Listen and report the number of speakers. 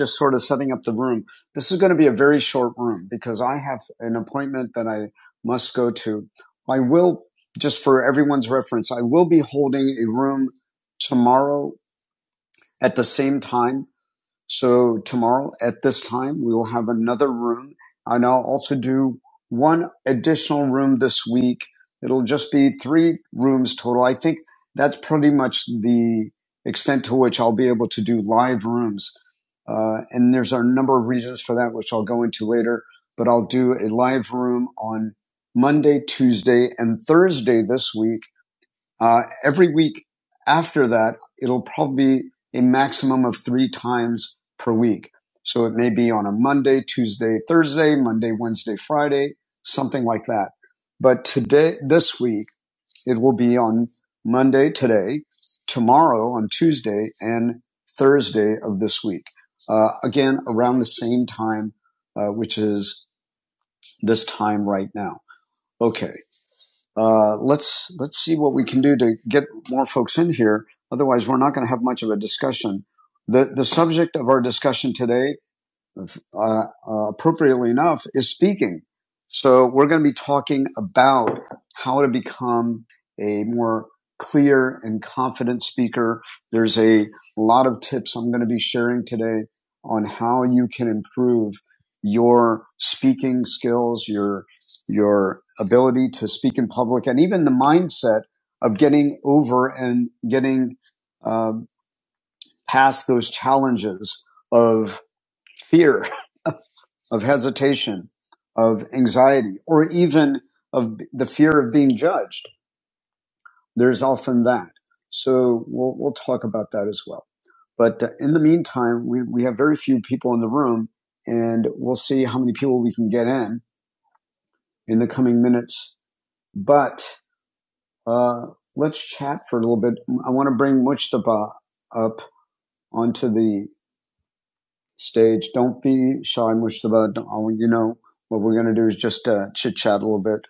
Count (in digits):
1